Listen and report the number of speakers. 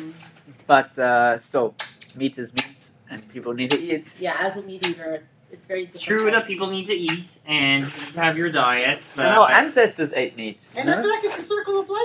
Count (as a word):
four